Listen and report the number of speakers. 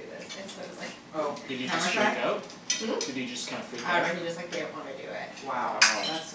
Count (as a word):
three